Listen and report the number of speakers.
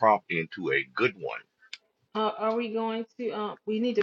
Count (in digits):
2